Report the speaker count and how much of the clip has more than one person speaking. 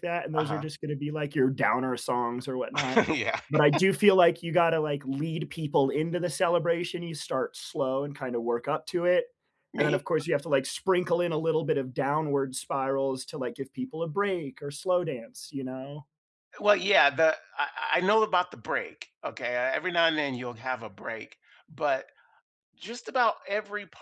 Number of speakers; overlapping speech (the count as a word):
two, about 2%